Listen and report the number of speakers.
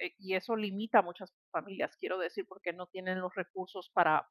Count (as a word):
one